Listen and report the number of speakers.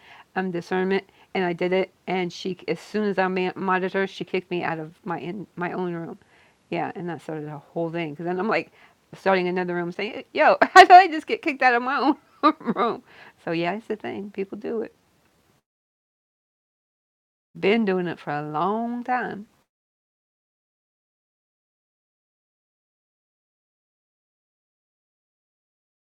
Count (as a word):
one